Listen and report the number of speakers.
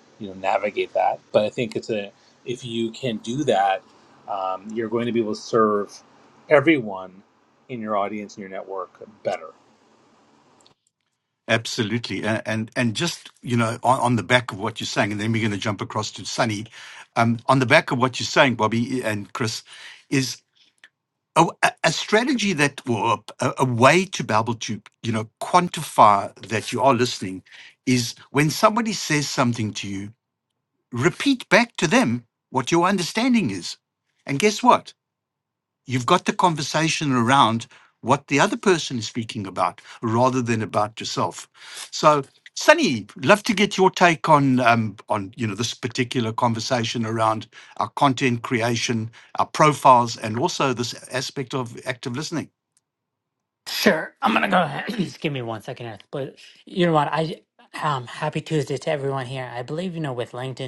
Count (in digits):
3